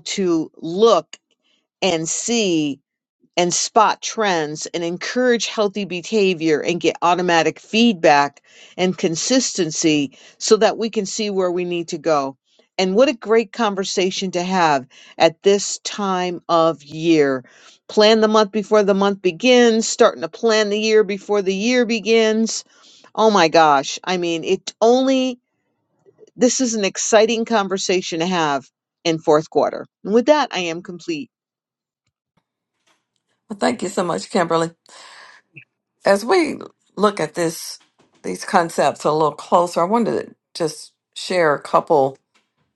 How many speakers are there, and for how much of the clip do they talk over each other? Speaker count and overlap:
two, no overlap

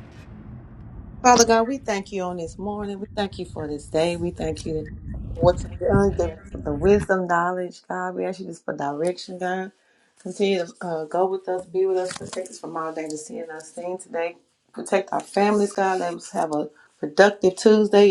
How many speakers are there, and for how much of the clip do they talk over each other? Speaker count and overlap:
one, no overlap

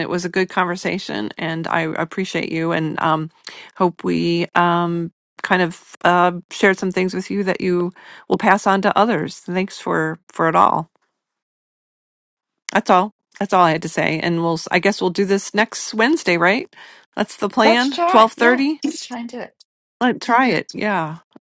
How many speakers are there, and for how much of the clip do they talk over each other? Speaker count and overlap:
two, about 6%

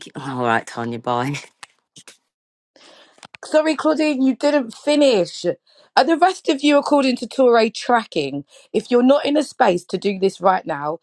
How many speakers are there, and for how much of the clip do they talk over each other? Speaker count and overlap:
two, no overlap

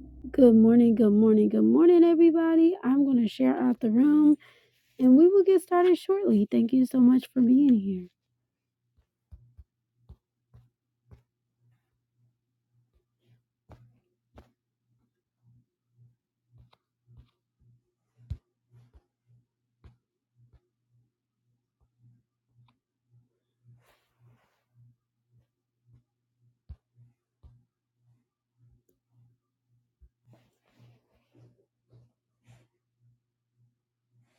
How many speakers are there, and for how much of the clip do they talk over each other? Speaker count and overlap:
one, no overlap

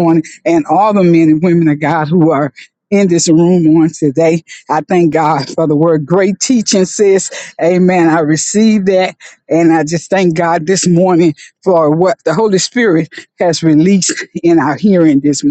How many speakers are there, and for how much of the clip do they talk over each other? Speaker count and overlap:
one, no overlap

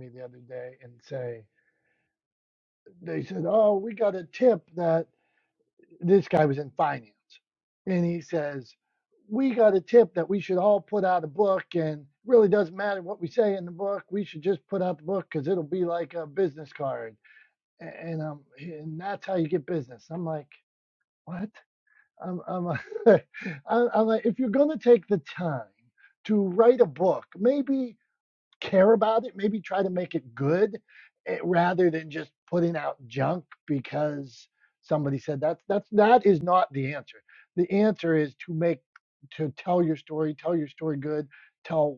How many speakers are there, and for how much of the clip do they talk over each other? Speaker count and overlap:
one, no overlap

